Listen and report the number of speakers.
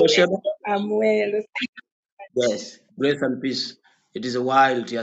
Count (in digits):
2